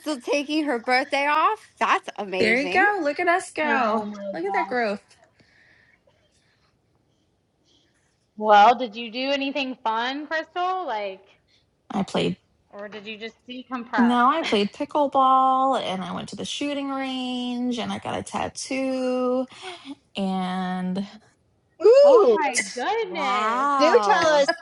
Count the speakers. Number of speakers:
4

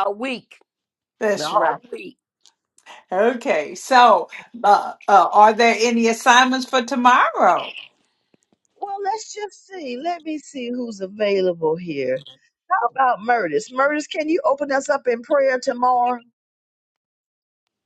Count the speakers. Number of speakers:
3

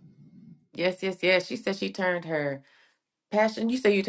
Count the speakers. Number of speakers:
1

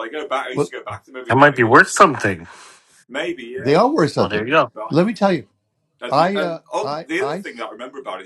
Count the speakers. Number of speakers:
3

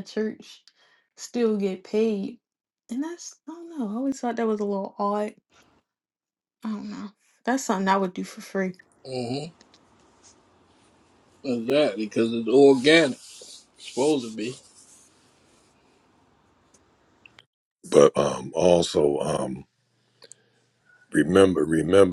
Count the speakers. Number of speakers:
3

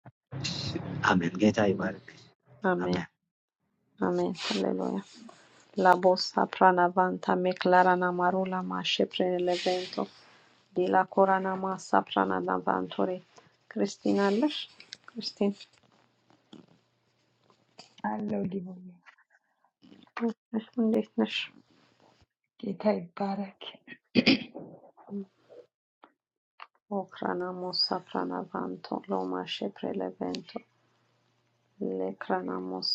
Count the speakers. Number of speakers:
3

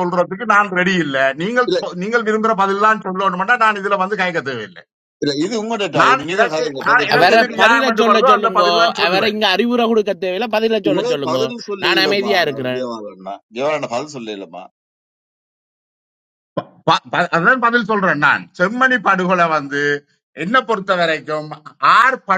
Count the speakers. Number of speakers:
3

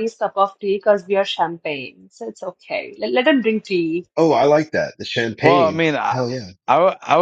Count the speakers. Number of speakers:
3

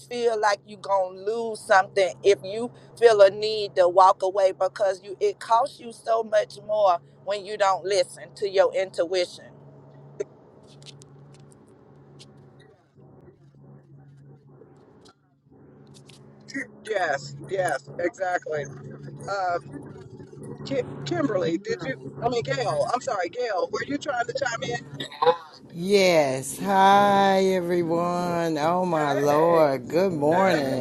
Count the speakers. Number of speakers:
3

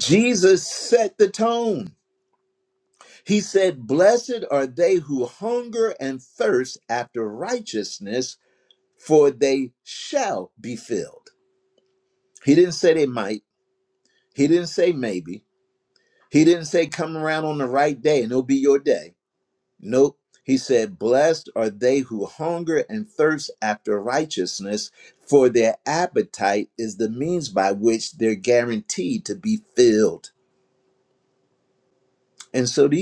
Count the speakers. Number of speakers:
1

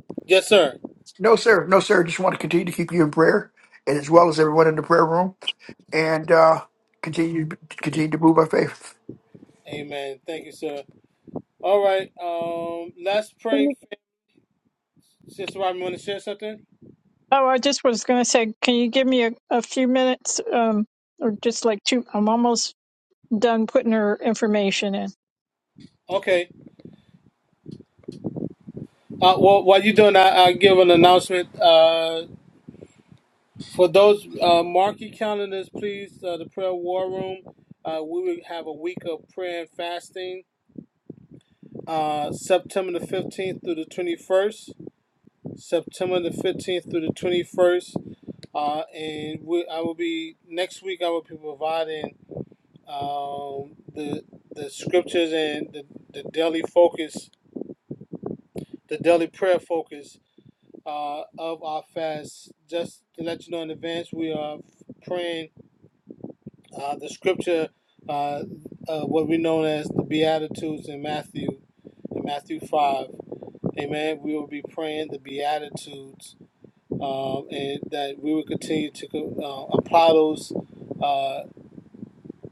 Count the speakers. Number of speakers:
3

